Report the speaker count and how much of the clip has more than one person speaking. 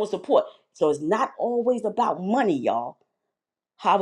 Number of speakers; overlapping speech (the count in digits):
1, no overlap